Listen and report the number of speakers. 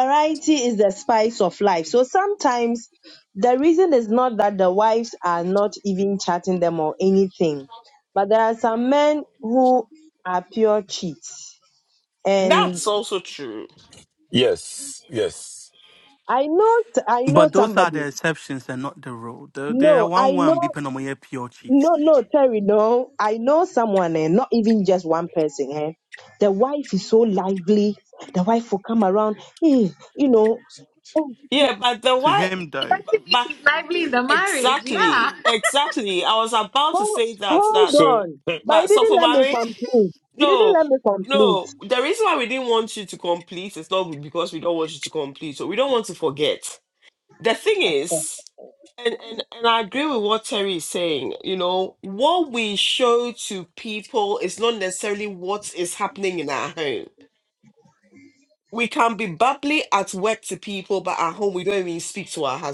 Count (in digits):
5